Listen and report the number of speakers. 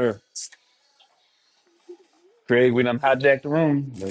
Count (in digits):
1